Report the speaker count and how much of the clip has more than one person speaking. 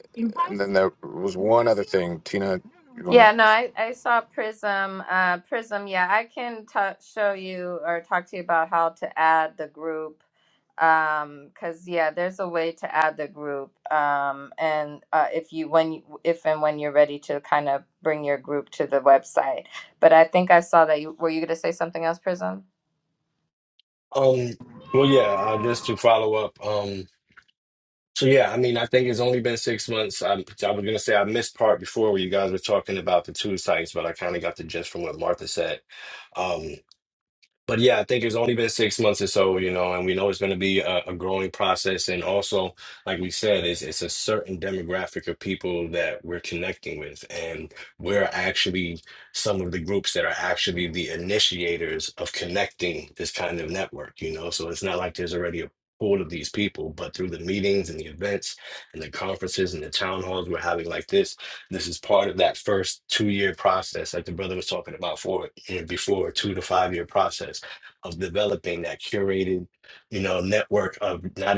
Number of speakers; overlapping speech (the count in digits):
3, under 1%